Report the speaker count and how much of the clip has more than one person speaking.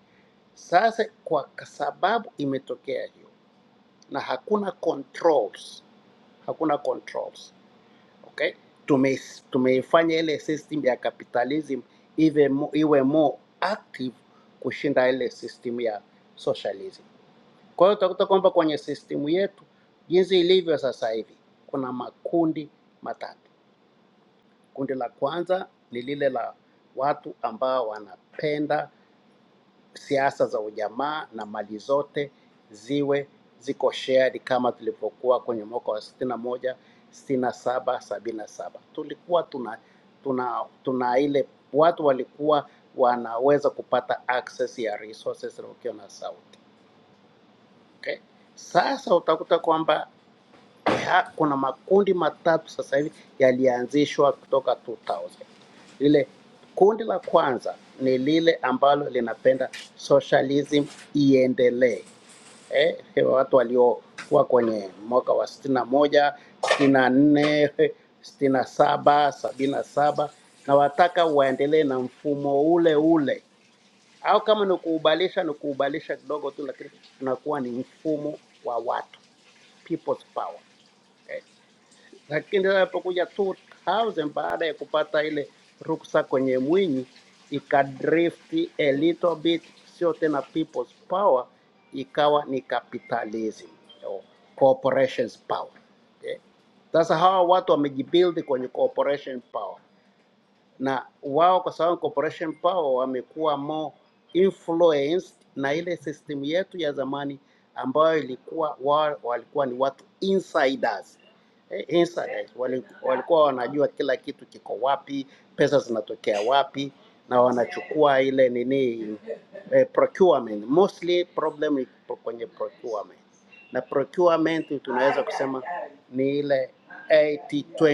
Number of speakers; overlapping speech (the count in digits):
1, no overlap